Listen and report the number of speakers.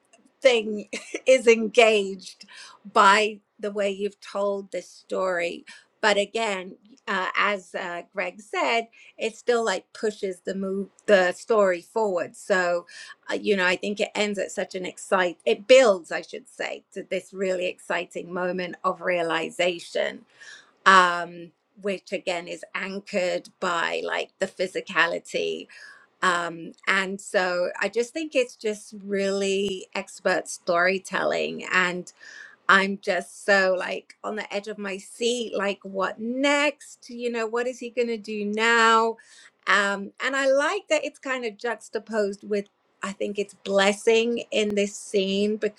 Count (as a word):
one